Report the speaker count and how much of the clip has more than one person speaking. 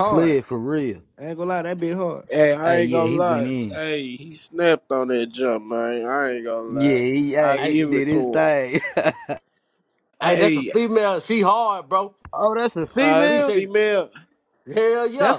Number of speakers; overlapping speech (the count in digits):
4, about 29%